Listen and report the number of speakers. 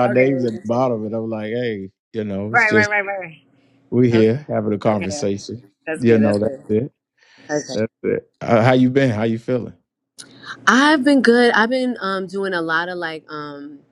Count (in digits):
2